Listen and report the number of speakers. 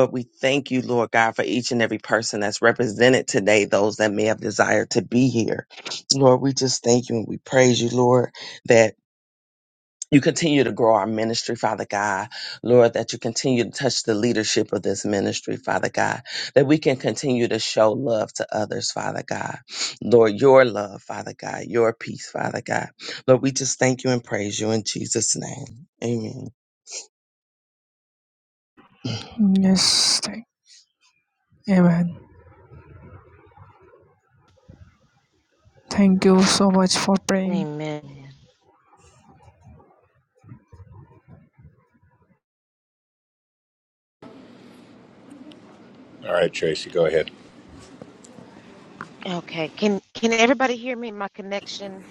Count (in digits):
4